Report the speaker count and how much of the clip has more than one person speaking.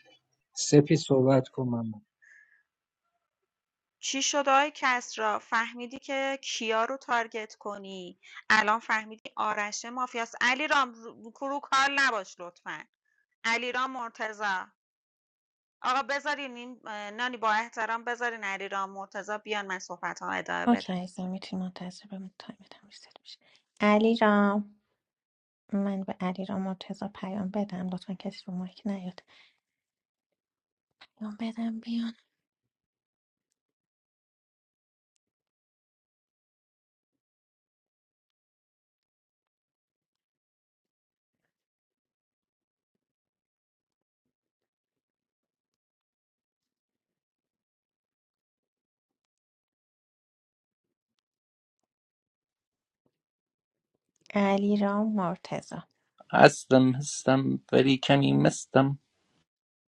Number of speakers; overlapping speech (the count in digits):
4, under 1%